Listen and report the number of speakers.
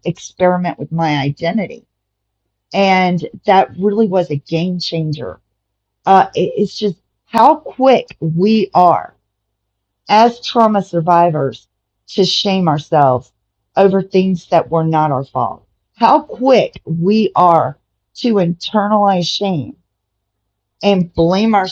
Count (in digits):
1